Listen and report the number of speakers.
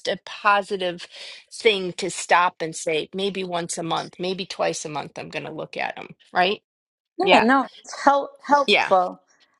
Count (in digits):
2